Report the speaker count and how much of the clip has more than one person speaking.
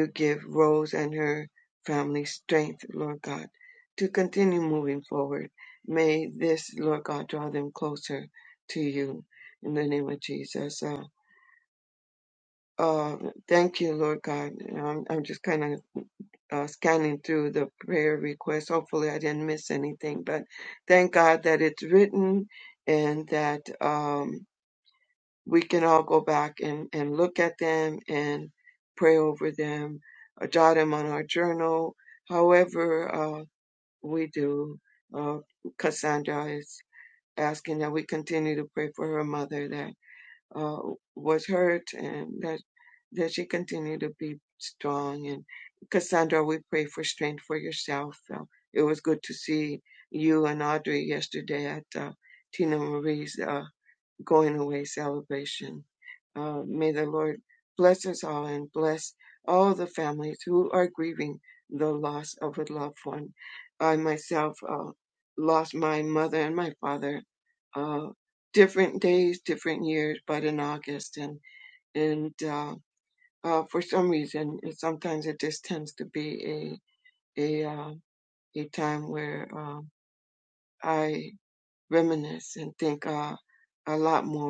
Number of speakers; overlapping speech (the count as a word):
one, no overlap